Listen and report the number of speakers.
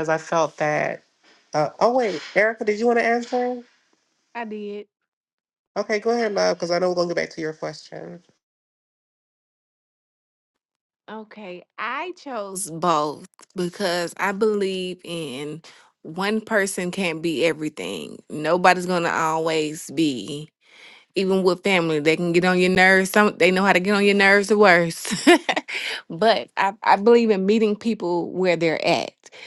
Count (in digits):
2